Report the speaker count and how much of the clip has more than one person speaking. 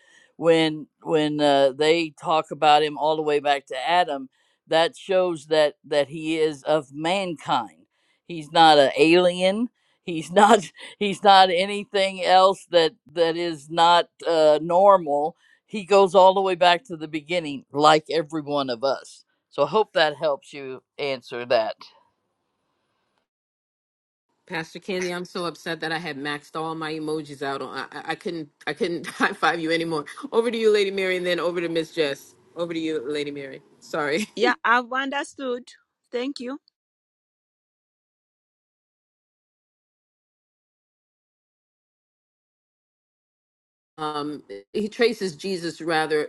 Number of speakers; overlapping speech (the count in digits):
3, no overlap